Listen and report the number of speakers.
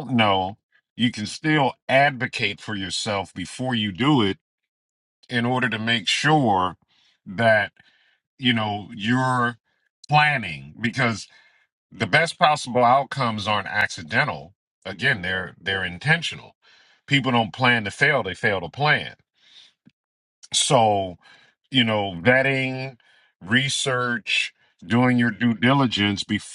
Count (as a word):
one